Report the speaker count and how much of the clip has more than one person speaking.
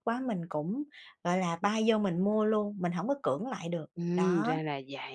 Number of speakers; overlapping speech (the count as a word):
two, about 12%